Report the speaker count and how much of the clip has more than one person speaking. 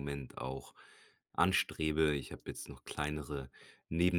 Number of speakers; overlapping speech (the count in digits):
1, no overlap